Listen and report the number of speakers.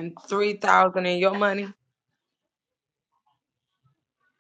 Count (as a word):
one